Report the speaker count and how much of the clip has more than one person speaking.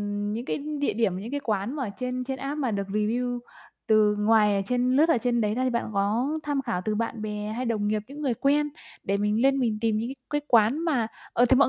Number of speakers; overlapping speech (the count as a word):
one, no overlap